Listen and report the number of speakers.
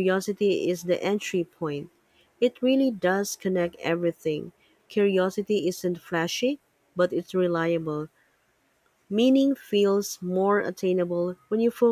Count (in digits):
1